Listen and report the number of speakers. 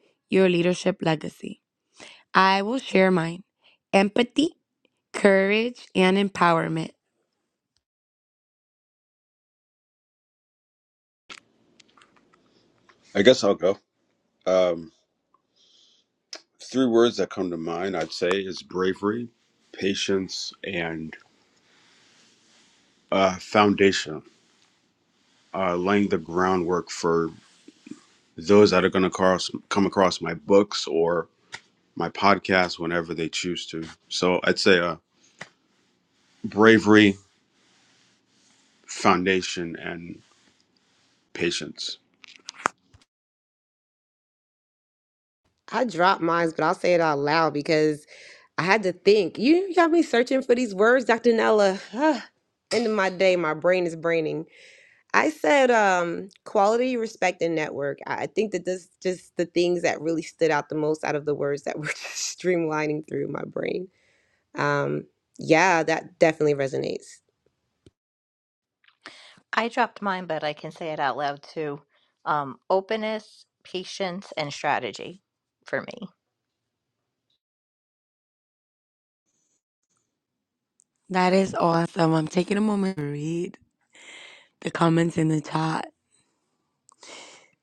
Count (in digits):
4